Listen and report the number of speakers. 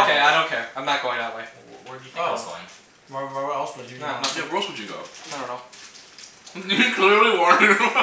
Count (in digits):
4